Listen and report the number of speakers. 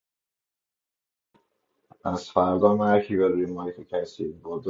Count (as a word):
one